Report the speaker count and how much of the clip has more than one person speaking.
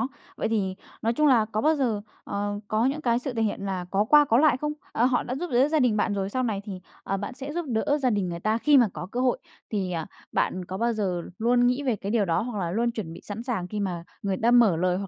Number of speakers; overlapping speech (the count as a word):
one, no overlap